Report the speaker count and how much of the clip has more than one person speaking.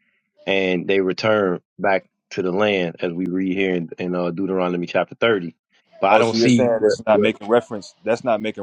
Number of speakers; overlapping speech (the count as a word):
two, about 15%